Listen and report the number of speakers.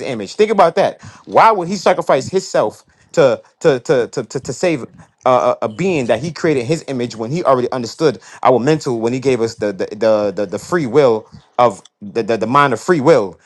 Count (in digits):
1